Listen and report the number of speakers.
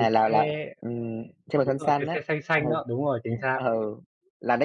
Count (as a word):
two